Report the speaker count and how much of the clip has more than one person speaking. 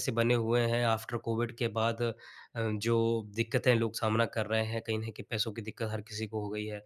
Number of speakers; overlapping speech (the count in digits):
1, no overlap